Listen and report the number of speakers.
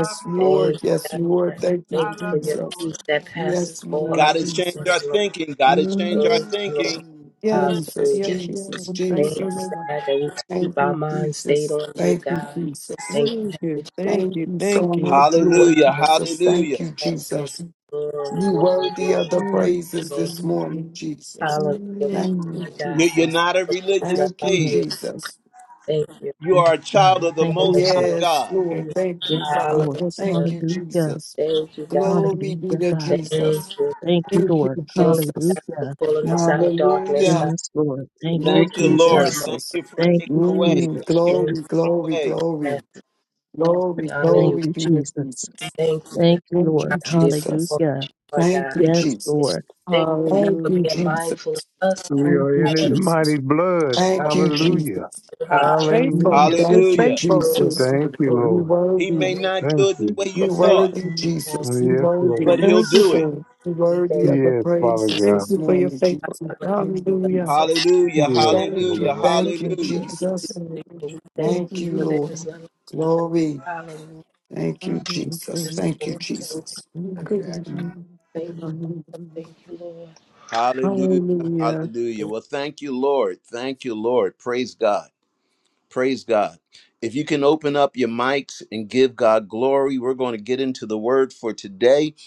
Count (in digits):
6